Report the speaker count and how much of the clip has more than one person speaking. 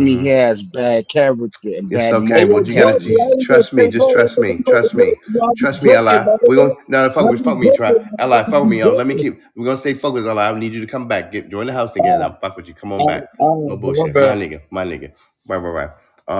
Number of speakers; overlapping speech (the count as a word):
three, about 49%